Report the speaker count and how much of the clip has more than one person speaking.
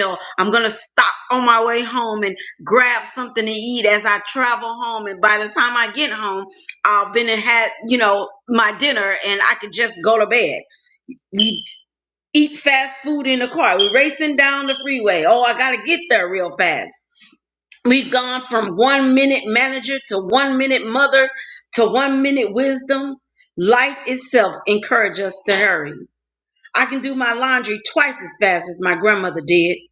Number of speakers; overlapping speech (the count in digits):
1, no overlap